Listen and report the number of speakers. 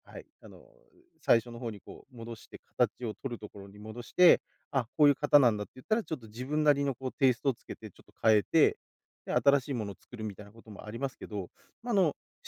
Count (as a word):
one